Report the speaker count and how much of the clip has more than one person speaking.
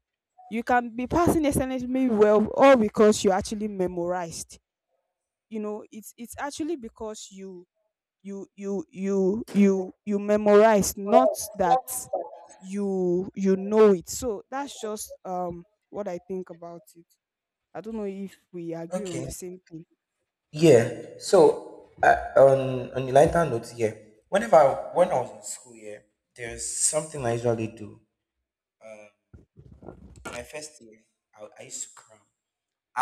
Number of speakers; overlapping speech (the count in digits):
2, about 1%